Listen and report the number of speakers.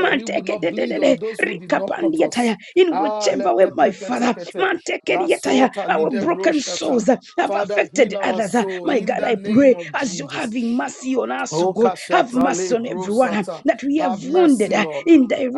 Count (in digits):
2